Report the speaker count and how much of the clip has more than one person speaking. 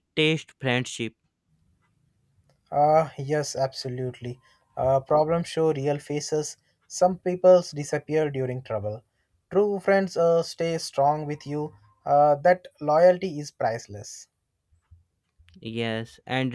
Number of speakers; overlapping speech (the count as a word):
two, no overlap